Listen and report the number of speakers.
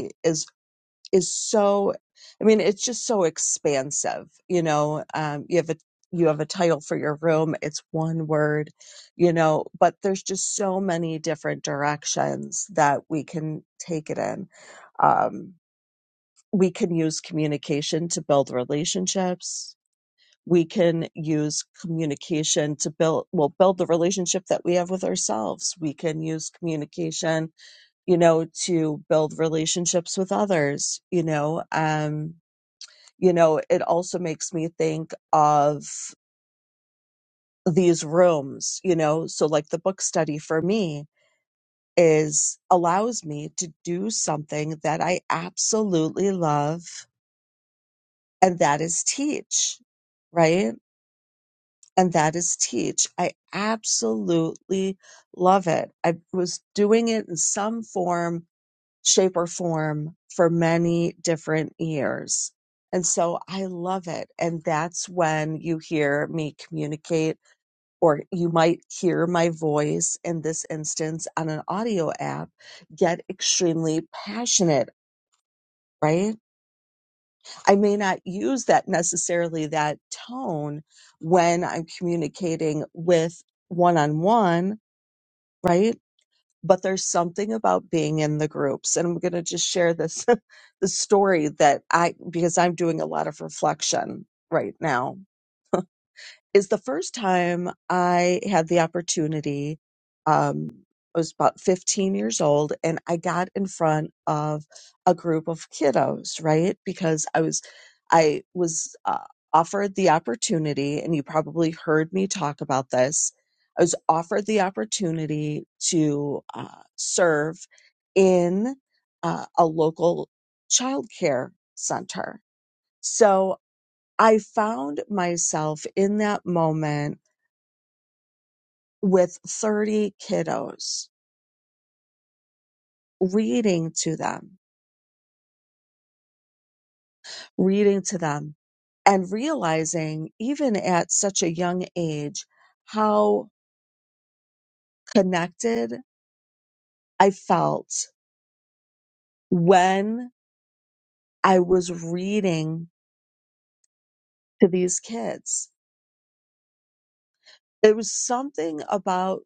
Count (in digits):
1